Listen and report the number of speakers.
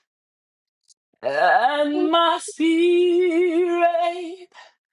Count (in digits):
1